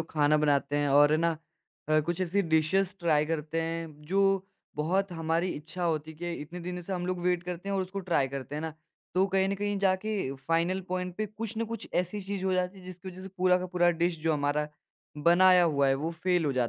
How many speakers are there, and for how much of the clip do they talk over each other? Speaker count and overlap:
one, no overlap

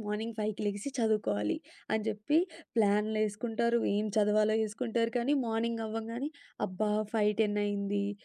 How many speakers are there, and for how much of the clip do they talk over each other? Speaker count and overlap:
one, no overlap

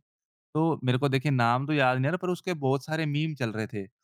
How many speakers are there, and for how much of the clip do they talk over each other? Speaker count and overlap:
one, no overlap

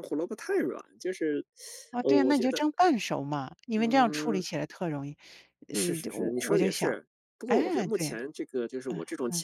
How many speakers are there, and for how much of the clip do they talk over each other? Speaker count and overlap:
two, about 35%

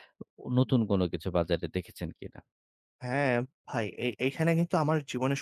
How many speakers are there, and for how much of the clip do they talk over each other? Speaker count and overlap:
two, no overlap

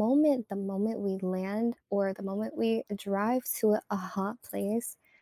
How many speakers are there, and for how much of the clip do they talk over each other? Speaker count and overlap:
one, no overlap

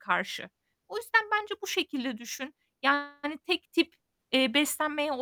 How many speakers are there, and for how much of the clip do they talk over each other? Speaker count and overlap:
one, no overlap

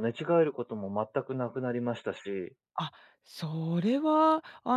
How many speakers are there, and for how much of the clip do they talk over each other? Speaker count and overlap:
two, no overlap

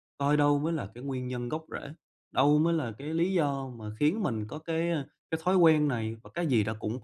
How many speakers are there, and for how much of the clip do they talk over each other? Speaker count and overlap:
one, no overlap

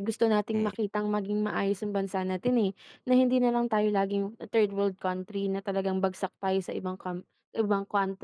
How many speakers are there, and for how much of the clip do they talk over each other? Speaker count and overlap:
one, no overlap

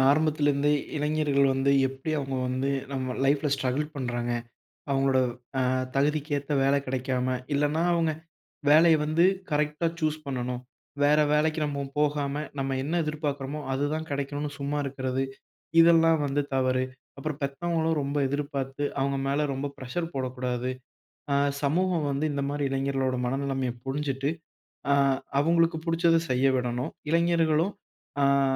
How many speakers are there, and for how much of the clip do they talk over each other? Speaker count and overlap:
one, no overlap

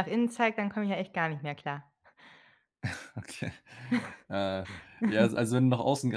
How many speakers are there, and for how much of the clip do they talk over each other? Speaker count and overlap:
two, no overlap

